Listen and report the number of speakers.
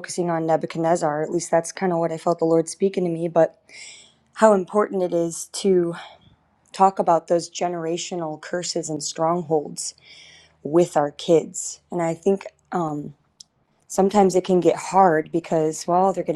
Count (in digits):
1